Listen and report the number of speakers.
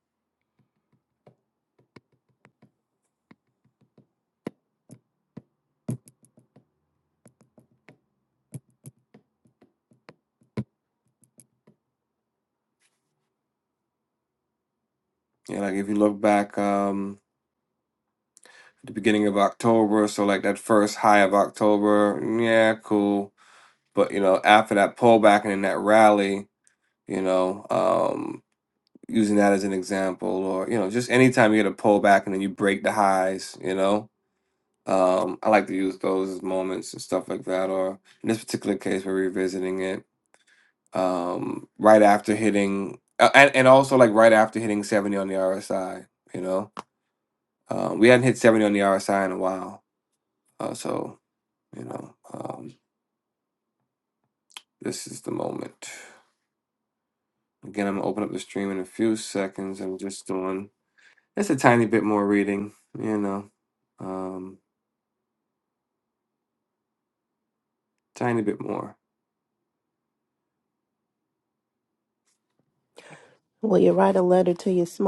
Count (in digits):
2